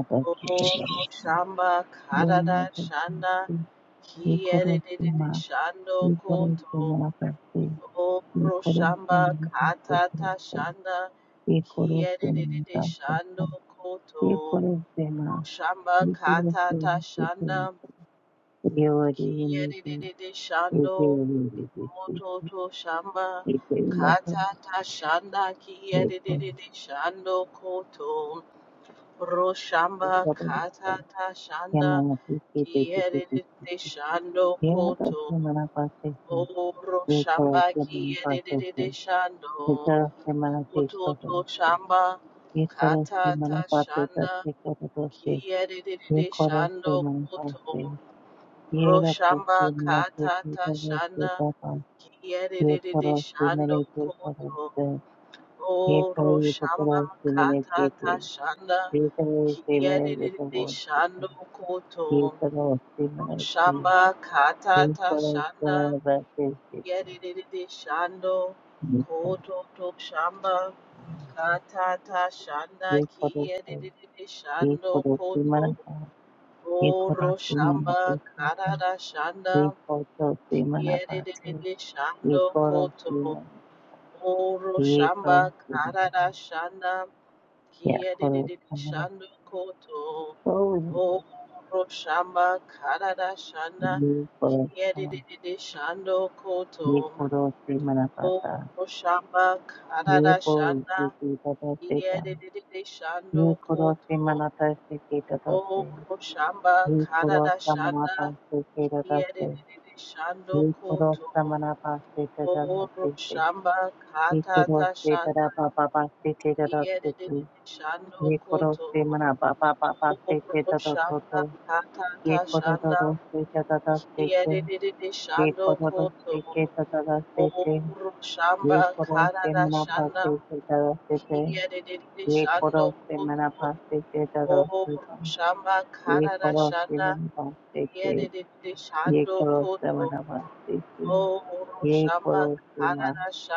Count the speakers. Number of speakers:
2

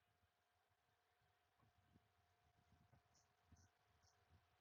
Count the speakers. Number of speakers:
0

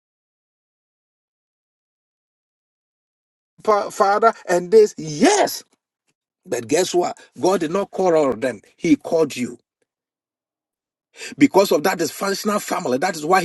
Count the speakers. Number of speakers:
1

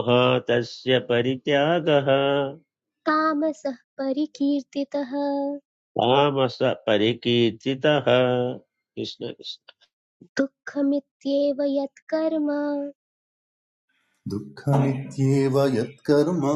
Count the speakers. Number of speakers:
3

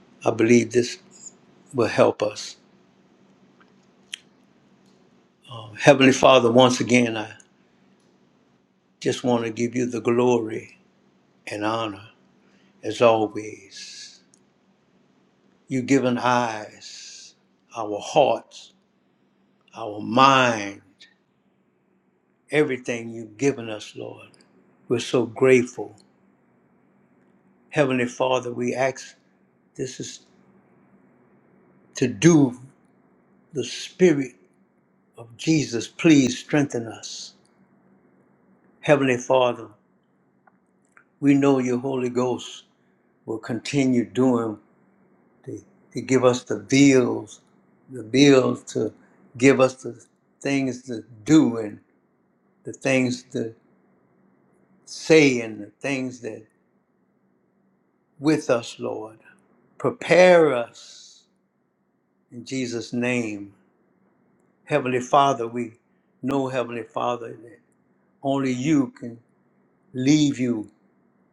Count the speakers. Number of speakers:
1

